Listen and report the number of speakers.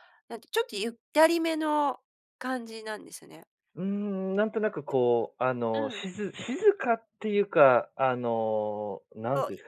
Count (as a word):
two